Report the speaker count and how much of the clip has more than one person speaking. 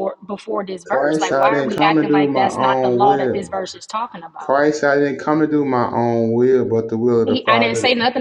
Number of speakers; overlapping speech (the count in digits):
2, about 43%